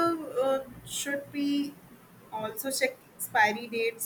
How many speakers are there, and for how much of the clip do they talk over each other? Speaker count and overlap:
one, no overlap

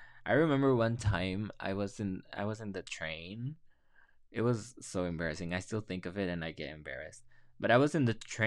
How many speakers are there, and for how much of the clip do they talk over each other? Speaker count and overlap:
one, no overlap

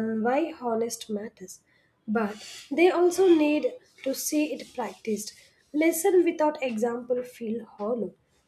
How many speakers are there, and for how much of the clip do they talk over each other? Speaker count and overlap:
one, no overlap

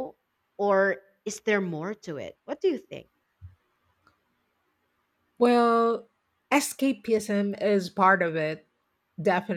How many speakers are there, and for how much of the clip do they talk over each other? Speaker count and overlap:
two, no overlap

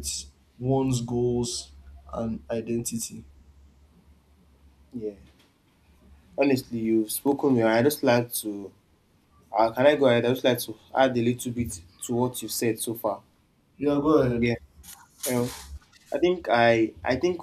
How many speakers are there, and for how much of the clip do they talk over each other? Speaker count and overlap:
two, about 1%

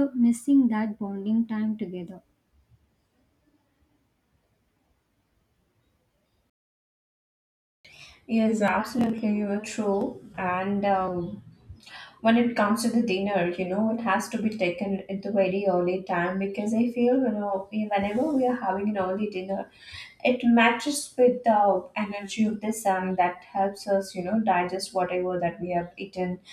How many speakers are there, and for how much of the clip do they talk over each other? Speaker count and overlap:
two, no overlap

